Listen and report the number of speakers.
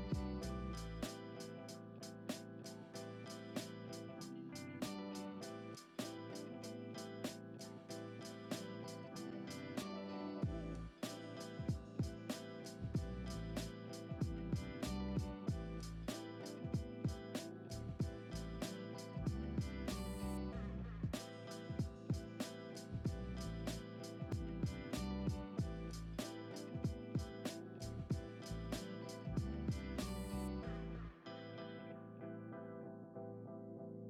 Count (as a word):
zero